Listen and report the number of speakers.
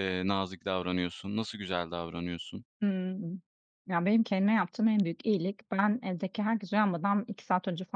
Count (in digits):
2